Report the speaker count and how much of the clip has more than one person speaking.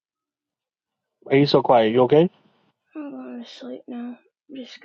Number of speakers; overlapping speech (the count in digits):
2, no overlap